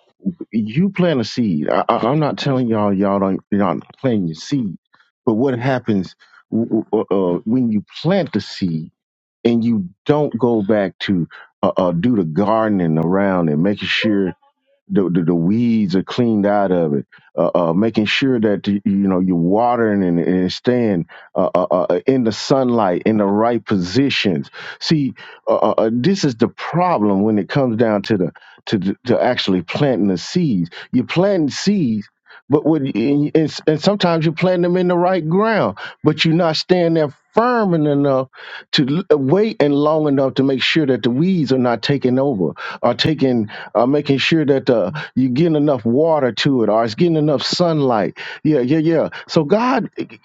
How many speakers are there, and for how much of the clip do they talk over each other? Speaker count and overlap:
one, no overlap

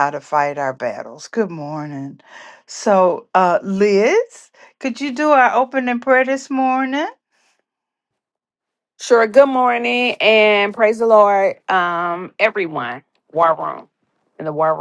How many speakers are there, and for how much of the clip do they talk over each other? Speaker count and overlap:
two, no overlap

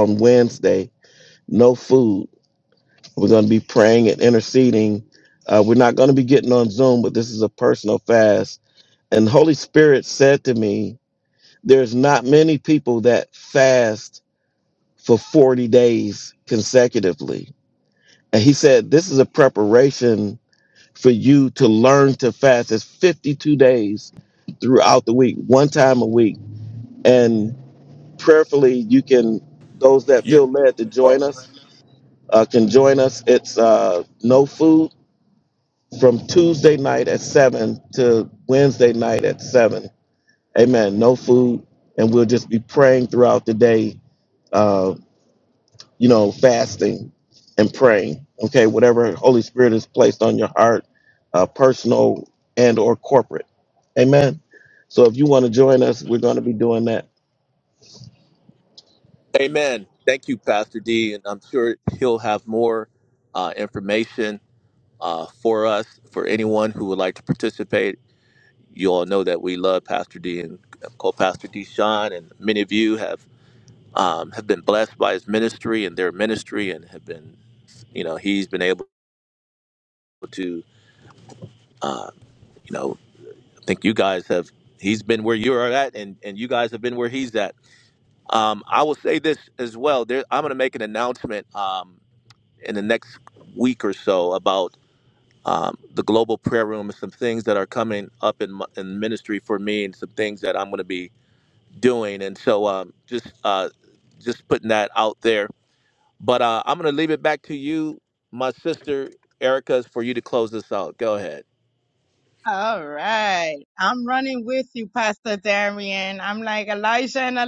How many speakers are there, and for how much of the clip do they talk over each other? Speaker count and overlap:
three, under 1%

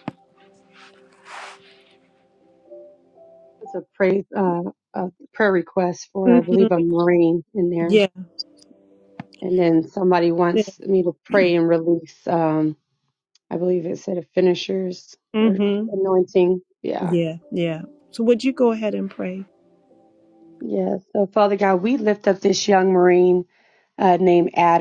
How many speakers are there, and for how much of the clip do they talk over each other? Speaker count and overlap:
two, about 5%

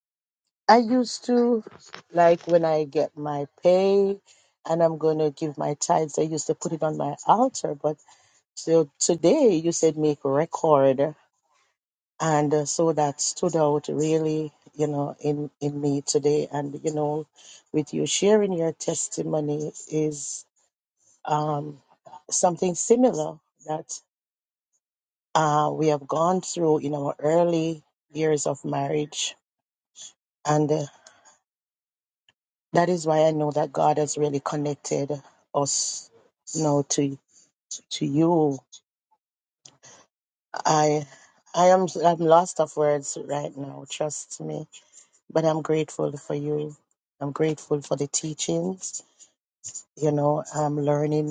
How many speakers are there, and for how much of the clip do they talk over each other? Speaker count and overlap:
one, no overlap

